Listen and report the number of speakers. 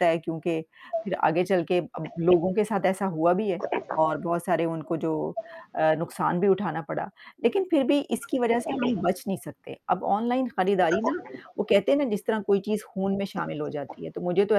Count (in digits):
1